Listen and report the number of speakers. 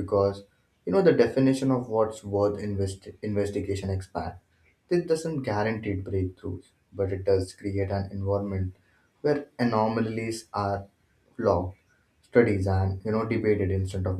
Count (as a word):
one